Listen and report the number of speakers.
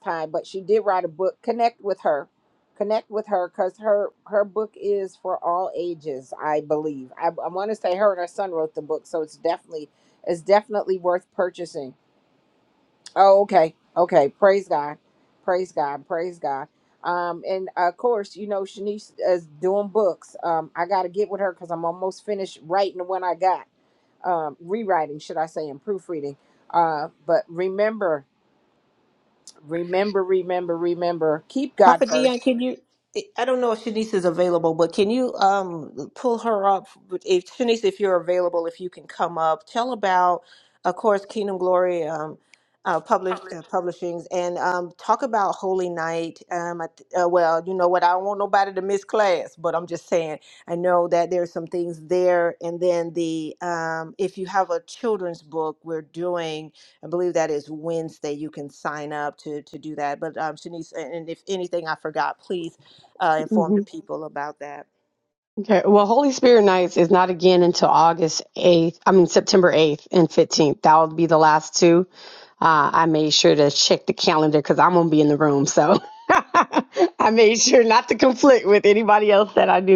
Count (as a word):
three